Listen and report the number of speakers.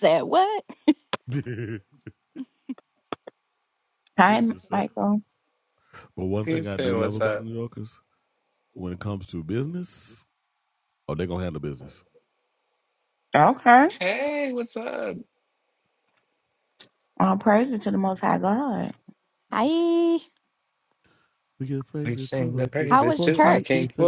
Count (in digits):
4